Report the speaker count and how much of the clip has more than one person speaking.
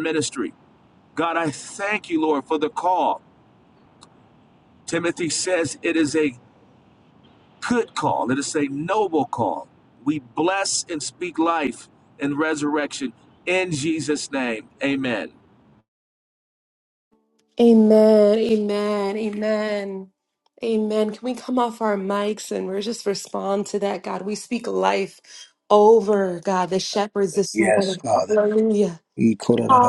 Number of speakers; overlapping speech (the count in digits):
3, about 3%